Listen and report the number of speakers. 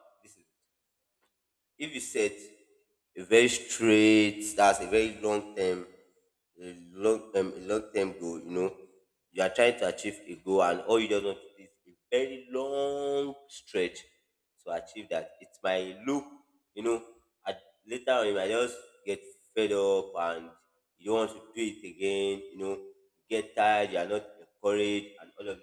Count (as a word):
one